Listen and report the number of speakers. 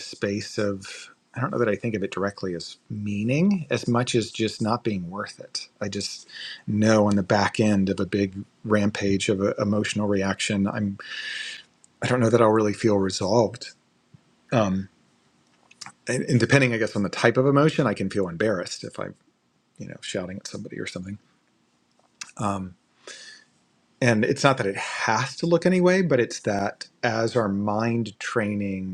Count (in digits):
1